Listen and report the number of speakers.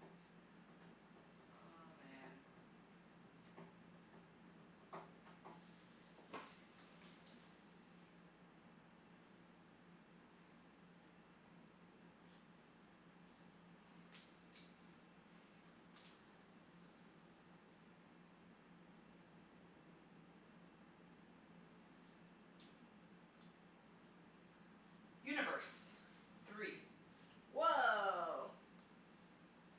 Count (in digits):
2